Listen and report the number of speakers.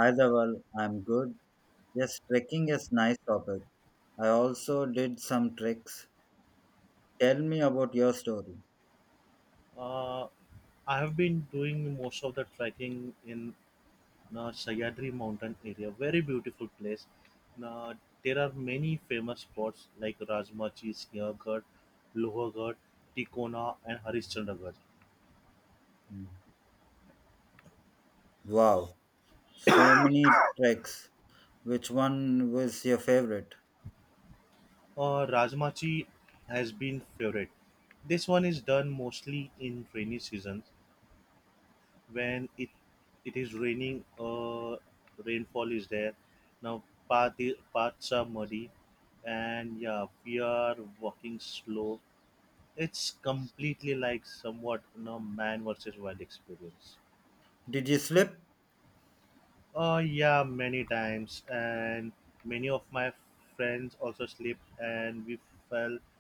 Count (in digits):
2